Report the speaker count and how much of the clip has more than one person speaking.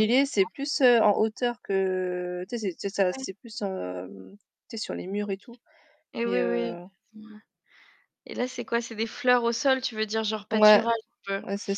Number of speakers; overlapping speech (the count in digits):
2, about 12%